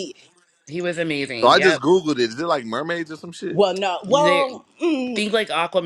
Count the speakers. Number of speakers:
3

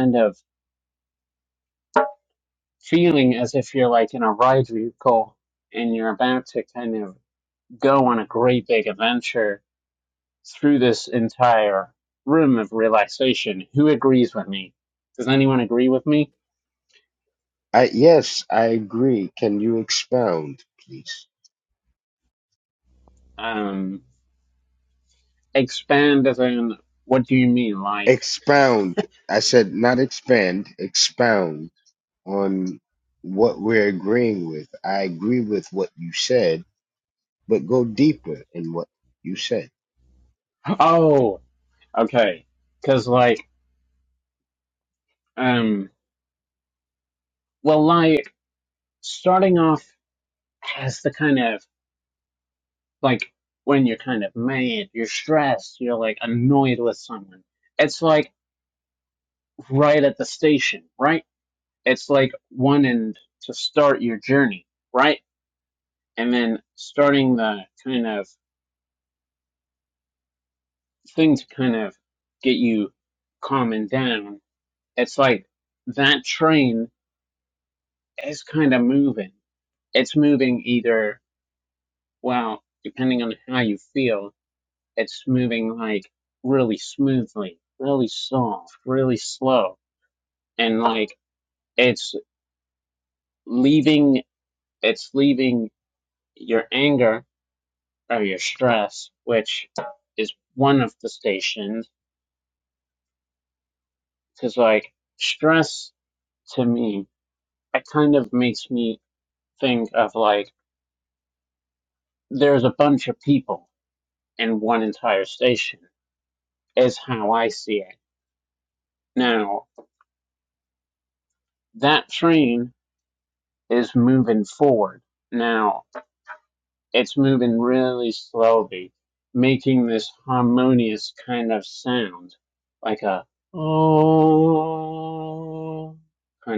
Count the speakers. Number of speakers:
2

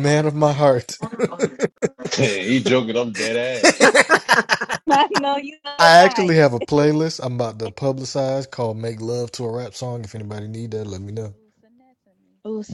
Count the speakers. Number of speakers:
3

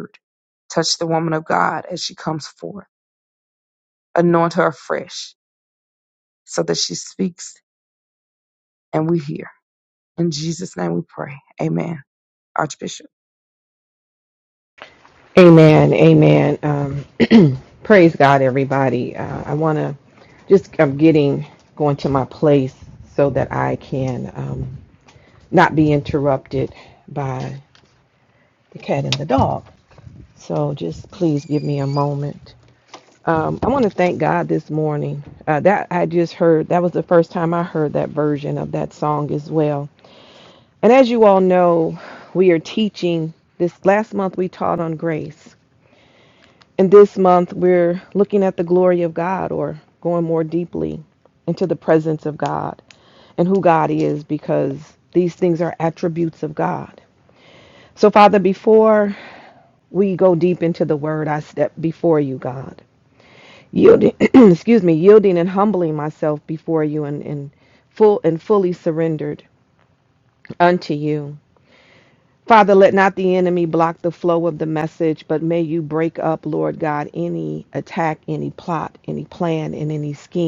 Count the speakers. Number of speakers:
2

